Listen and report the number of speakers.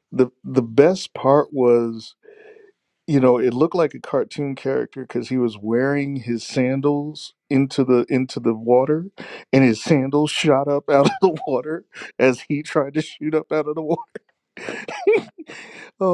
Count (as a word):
one